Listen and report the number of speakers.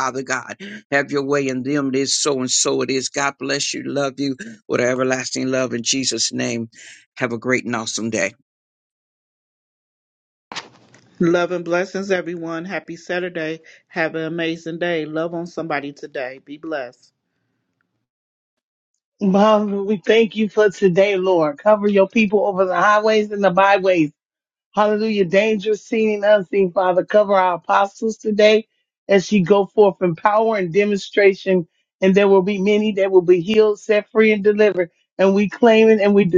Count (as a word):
three